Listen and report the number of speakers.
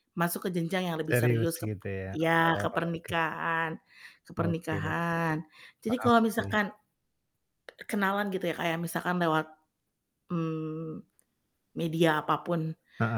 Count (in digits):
2